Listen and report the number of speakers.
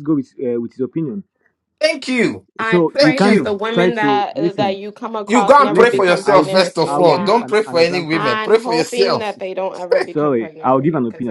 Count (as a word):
three